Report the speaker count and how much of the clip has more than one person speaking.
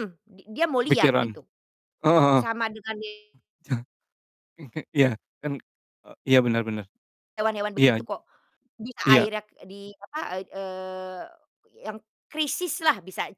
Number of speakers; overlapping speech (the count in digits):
2, about 7%